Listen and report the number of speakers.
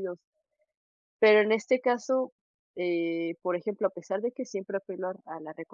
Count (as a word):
one